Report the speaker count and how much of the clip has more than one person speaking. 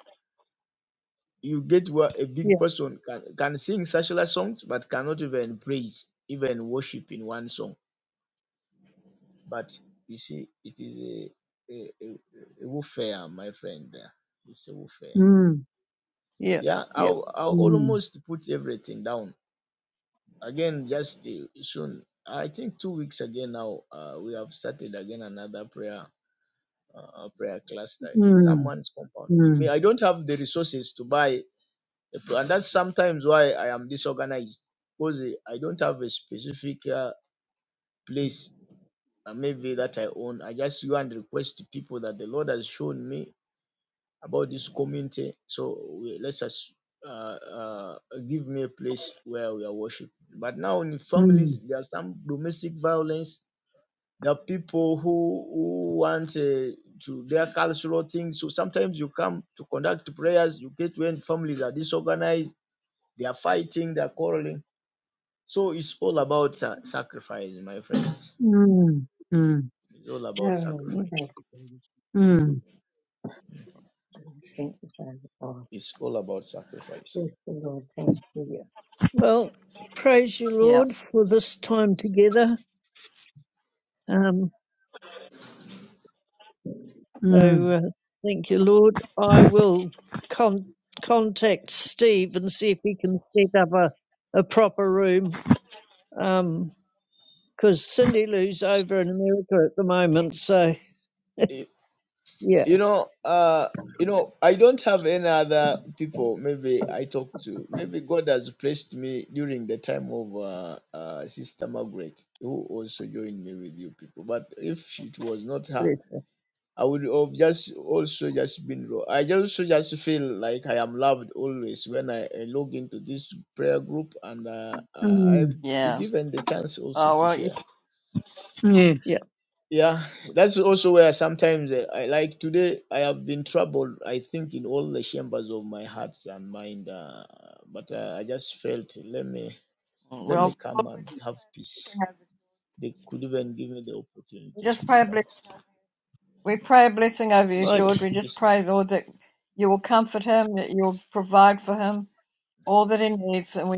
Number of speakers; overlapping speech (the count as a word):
five, about 4%